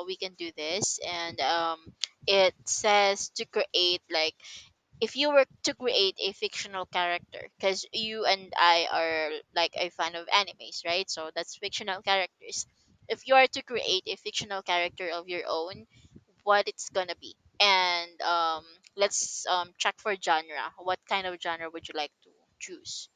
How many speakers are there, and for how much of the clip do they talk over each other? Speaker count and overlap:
1, no overlap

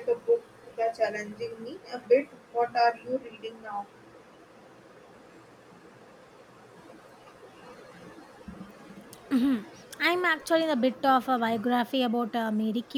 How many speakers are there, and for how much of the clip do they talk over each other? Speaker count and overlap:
2, no overlap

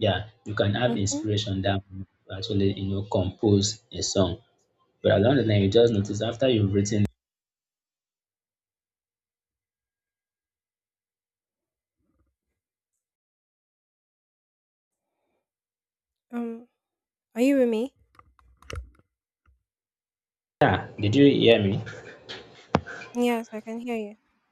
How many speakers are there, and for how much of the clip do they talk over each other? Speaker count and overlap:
2, about 2%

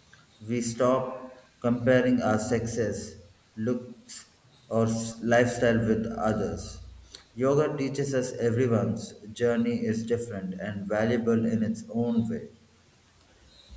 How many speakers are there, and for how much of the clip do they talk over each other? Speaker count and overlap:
1, no overlap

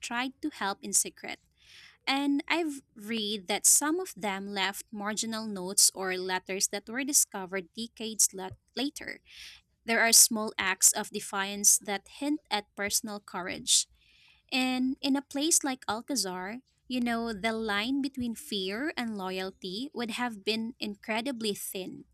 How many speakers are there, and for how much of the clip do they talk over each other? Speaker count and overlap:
1, no overlap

